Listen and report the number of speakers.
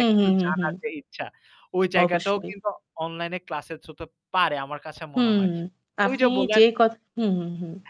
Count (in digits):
2